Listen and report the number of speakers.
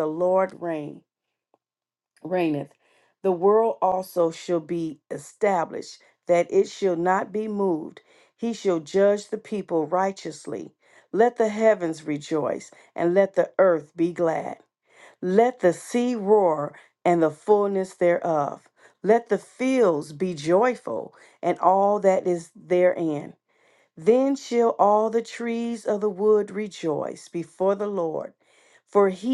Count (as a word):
one